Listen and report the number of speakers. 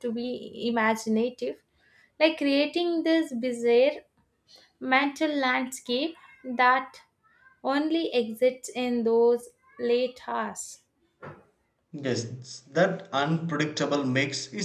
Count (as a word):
two